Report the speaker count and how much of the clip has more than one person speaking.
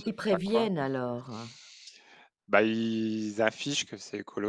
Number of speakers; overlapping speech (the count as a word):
two, about 16%